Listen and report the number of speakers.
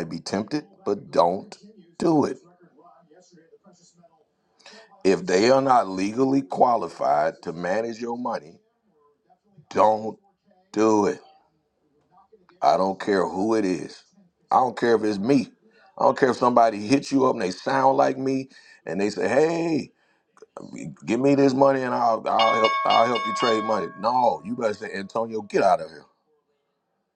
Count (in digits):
1